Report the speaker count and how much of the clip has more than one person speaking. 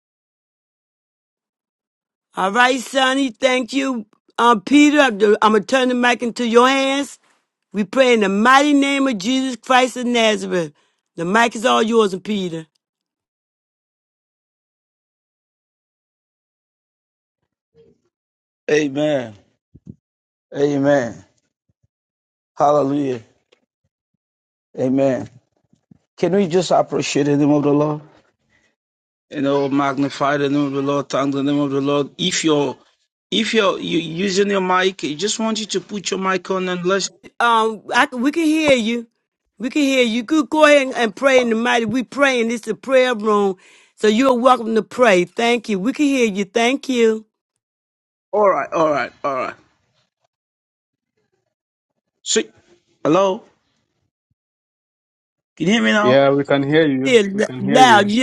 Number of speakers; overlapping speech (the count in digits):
3, about 2%